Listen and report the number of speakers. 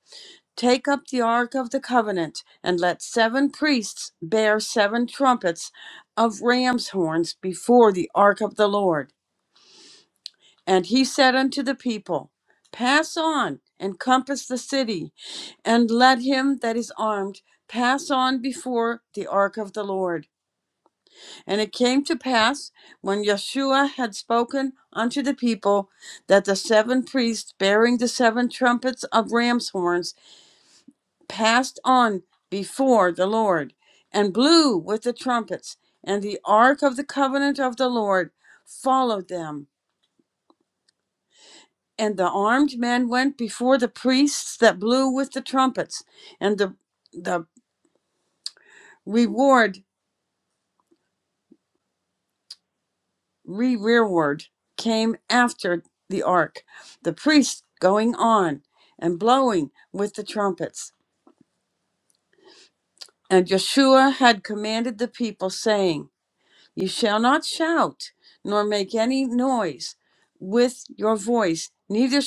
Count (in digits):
1